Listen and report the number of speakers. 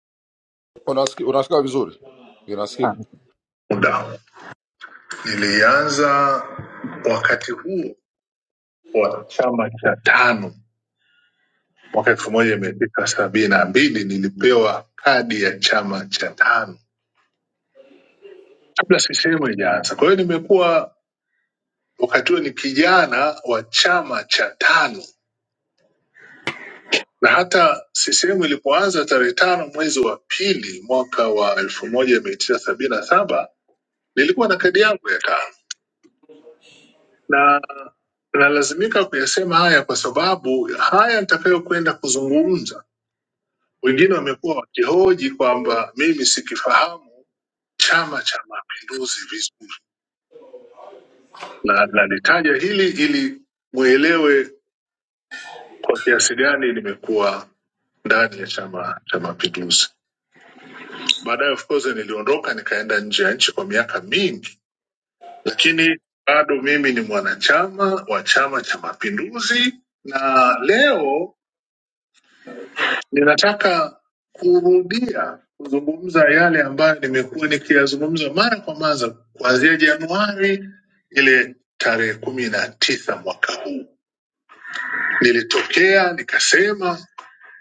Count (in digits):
2